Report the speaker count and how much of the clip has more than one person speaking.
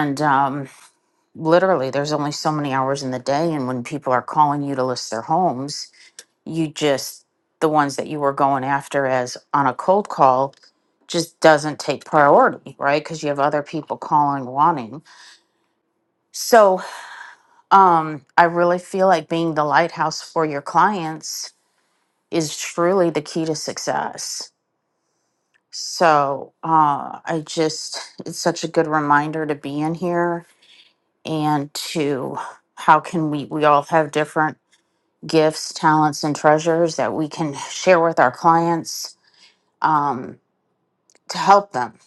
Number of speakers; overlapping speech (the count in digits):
1, no overlap